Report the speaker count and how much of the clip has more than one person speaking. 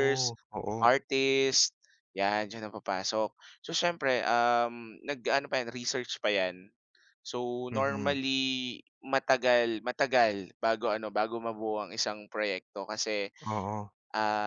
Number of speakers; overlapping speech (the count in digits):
2, about 6%